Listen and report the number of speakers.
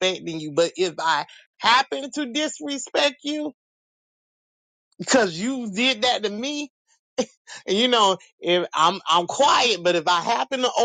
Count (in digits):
1